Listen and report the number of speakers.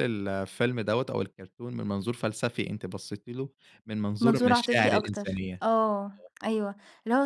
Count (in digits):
2